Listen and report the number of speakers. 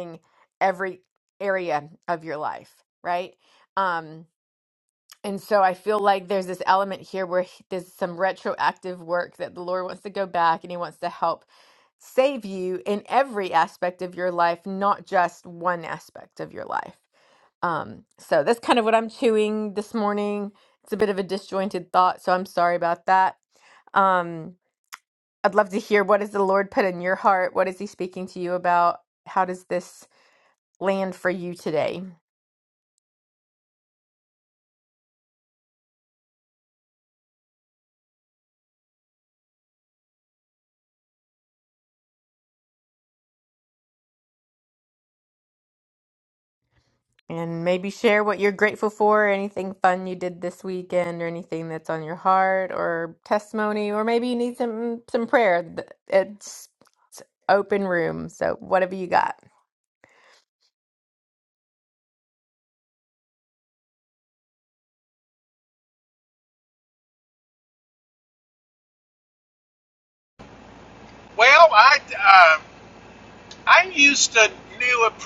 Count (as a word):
two